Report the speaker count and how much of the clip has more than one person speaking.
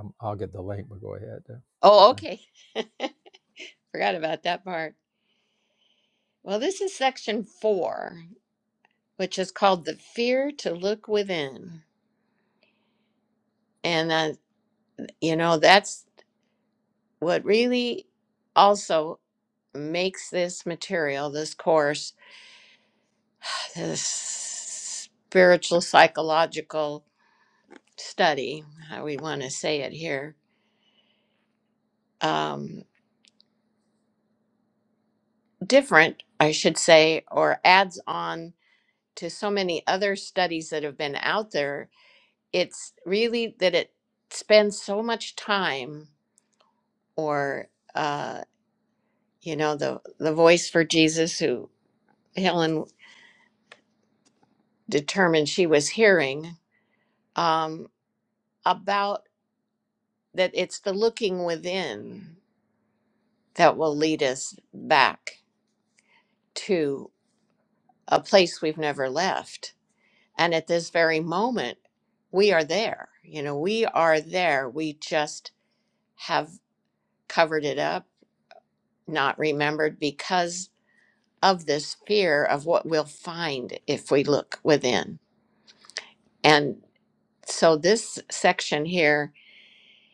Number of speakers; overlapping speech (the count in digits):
2, under 1%